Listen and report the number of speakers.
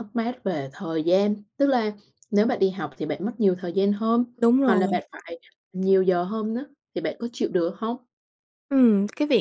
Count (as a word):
two